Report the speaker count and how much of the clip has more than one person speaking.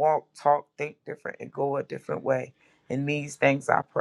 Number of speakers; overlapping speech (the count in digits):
1, no overlap